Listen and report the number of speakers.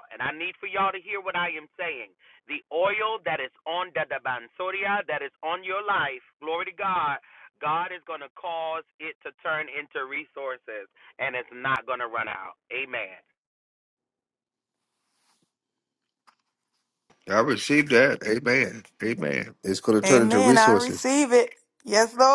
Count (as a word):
three